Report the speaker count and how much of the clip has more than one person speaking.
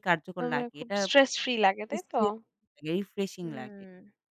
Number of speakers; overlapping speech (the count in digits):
2, about 22%